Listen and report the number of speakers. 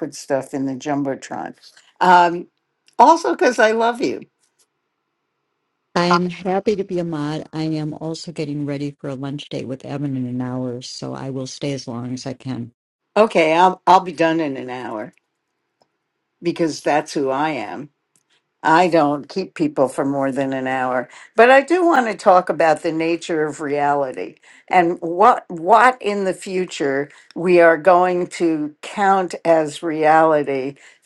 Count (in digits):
2